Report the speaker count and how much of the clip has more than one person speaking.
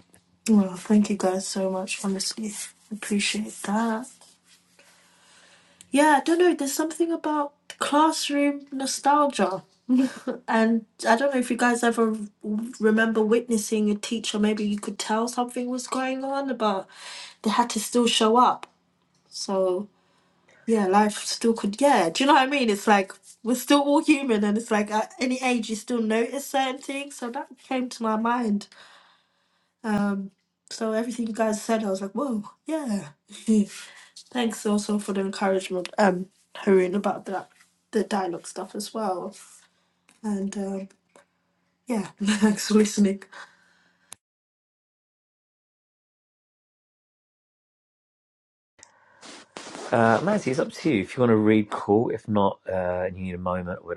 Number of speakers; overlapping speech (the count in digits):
2, no overlap